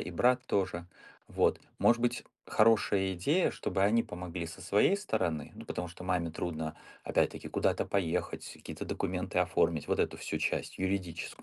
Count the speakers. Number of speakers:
one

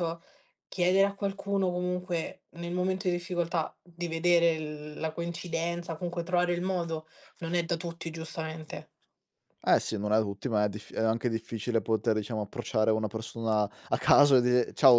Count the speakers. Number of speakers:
two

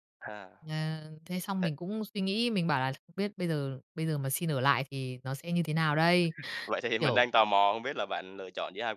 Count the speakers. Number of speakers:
two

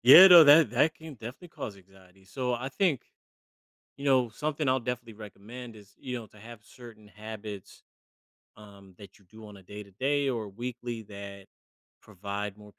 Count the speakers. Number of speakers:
one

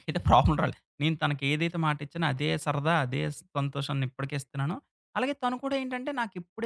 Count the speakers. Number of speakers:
one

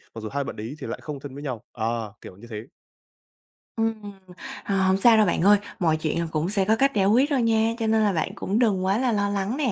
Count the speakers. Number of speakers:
two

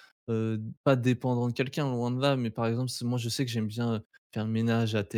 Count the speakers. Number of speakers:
one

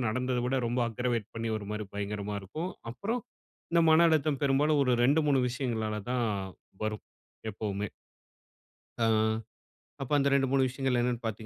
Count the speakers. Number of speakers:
one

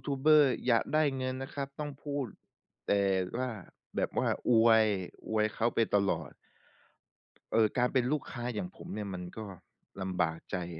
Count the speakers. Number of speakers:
one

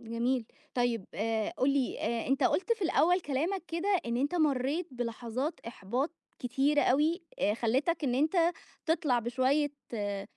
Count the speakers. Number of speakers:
one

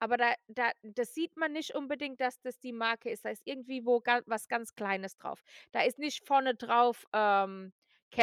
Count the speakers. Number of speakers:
one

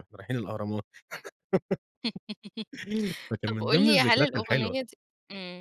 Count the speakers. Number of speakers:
two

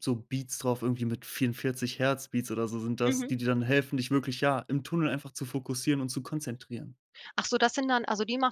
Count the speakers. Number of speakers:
two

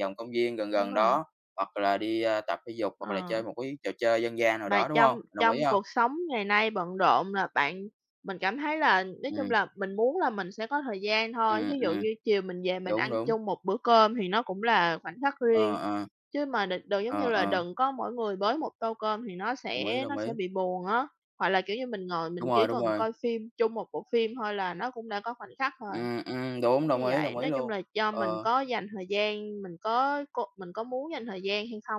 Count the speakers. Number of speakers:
two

